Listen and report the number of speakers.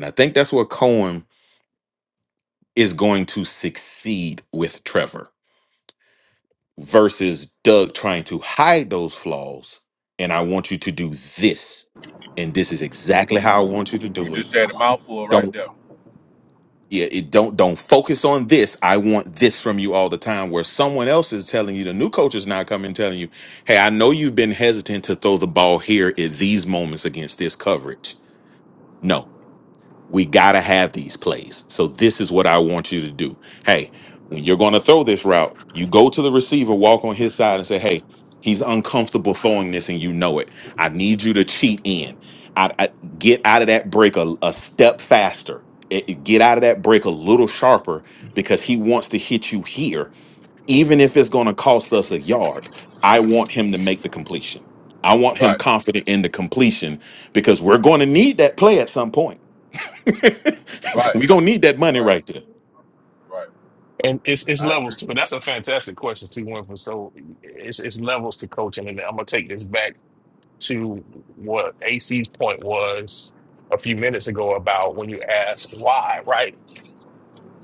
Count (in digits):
3